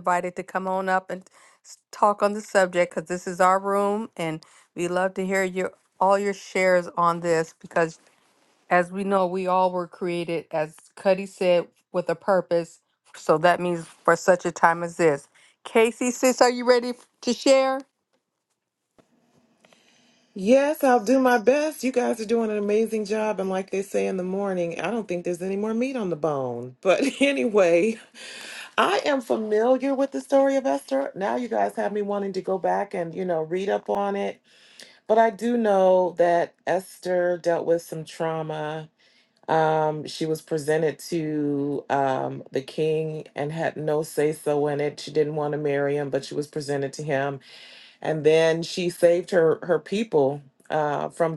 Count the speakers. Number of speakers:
2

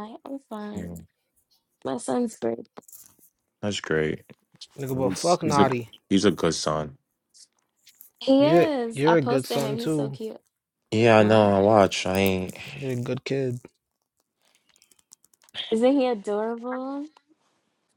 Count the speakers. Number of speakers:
3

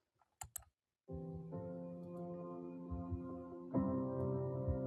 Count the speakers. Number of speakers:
0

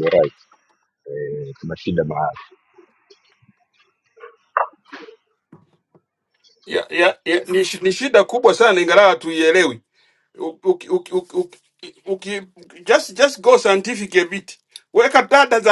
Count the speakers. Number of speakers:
2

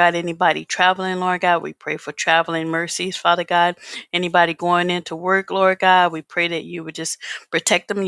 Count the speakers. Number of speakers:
1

